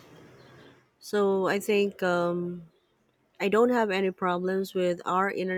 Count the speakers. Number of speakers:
one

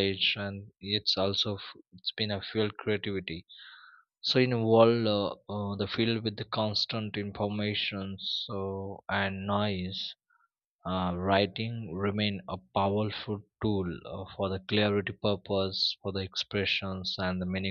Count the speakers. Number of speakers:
one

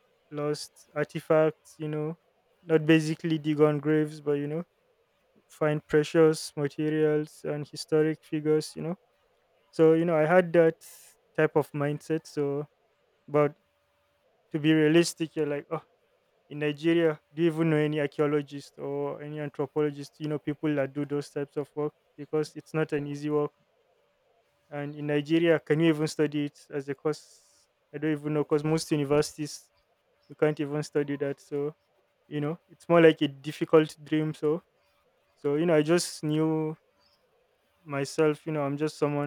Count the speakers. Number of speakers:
one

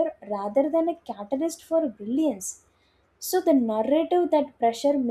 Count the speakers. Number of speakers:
one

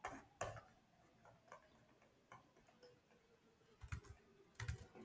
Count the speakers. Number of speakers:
zero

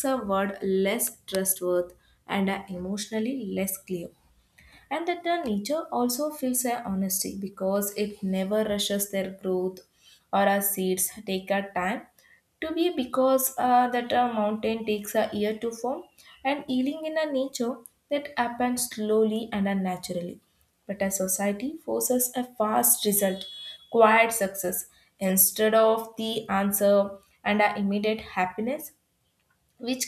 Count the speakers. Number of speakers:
one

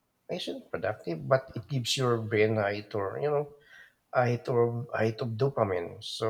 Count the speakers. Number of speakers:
one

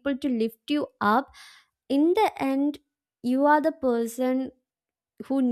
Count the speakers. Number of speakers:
one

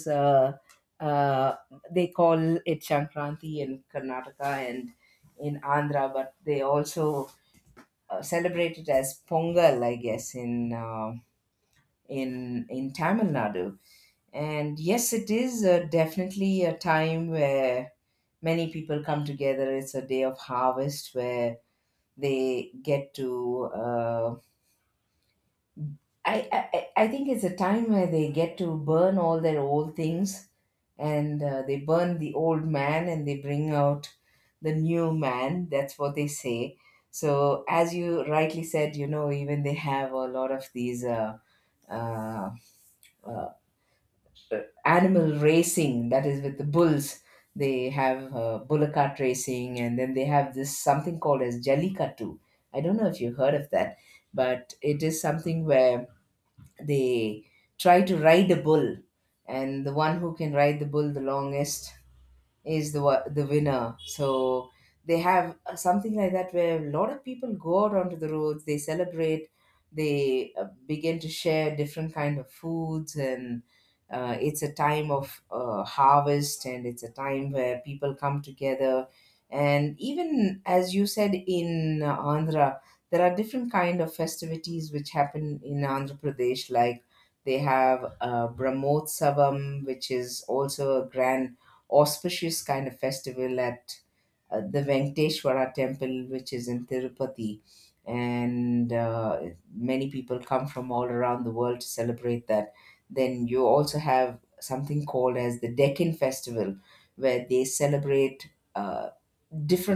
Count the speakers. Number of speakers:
one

